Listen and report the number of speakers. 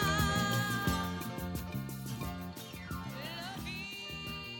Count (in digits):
0